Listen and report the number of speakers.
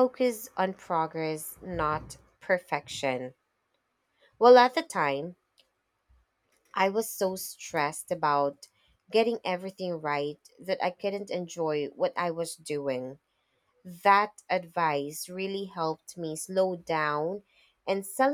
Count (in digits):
1